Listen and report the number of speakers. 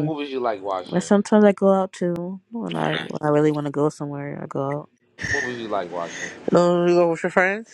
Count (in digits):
3